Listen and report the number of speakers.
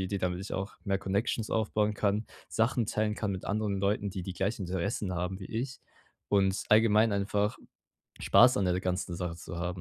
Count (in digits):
1